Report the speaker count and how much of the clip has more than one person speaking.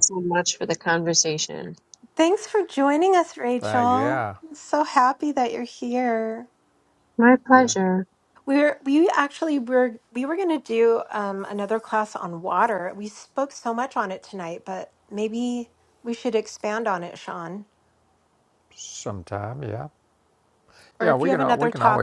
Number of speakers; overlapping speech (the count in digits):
3, about 9%